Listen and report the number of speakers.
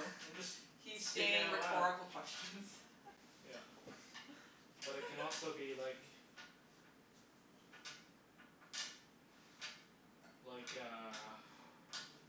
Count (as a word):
two